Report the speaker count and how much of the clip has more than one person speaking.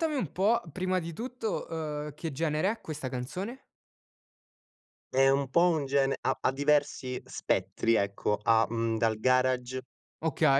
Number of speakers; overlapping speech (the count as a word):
two, no overlap